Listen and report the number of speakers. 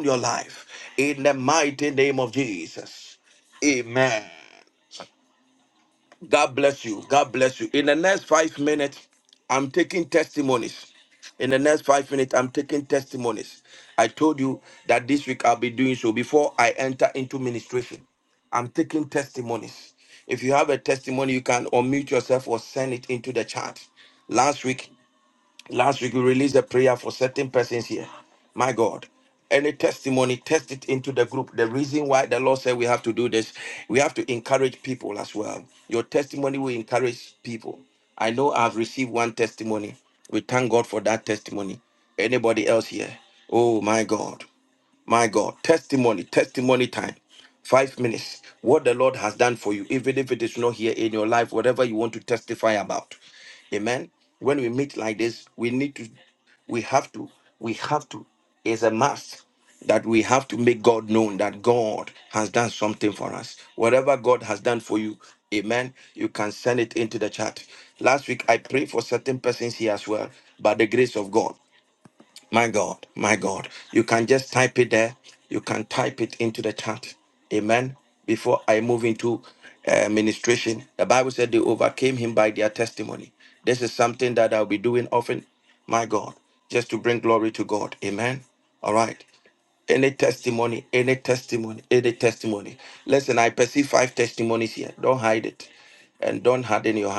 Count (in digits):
1